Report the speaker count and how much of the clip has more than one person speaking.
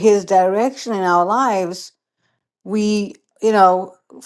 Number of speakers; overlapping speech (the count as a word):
one, no overlap